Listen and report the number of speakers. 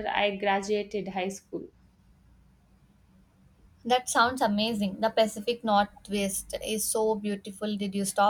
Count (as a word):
two